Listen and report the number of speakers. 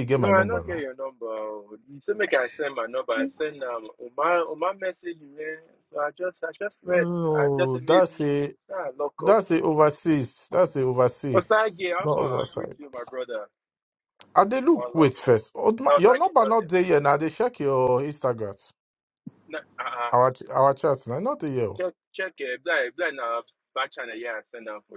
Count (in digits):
2